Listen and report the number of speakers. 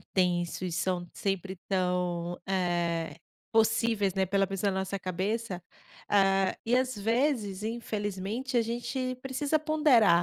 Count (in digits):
1